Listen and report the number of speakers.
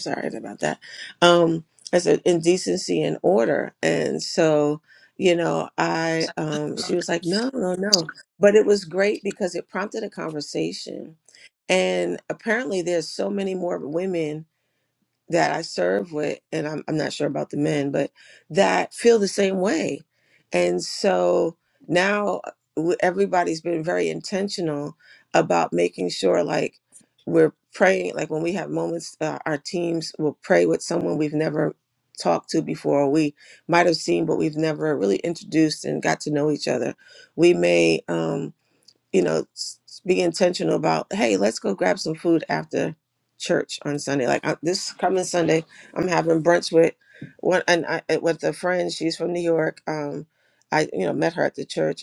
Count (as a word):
one